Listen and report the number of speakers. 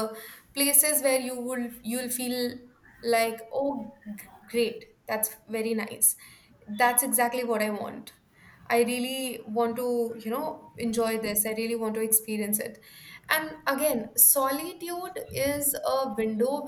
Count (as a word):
one